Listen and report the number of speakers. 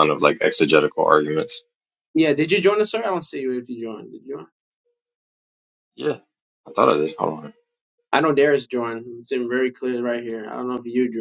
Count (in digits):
2